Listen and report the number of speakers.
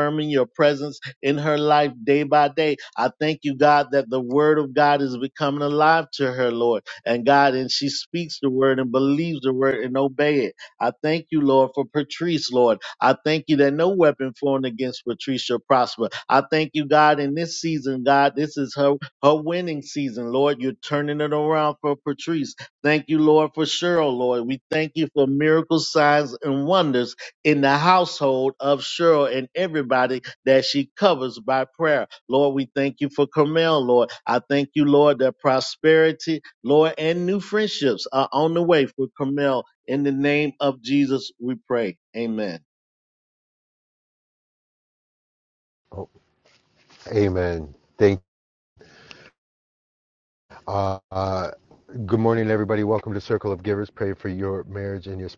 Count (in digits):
2